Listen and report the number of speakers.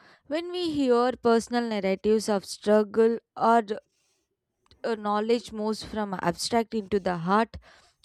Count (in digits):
1